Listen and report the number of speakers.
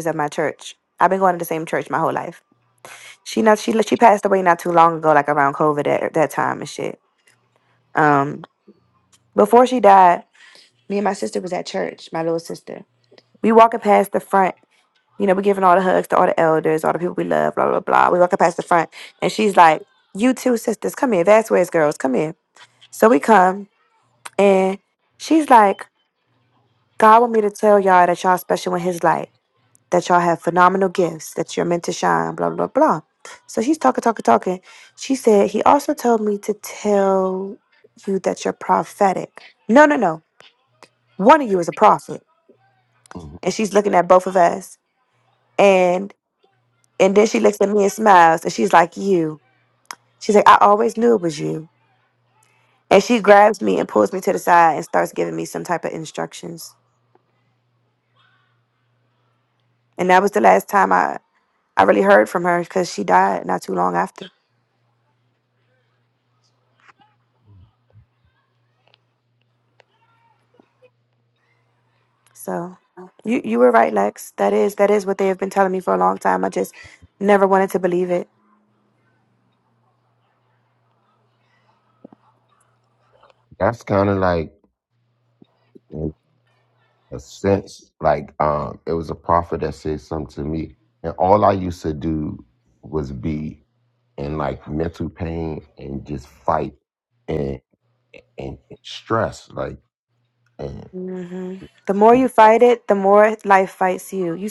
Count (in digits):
2